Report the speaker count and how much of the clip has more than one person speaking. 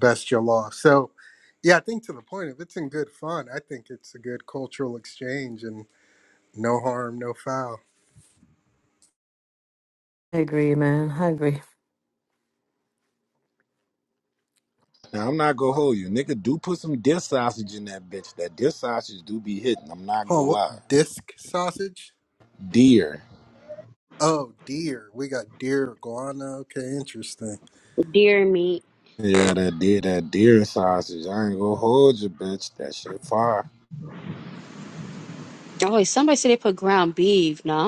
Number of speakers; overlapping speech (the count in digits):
4, about 1%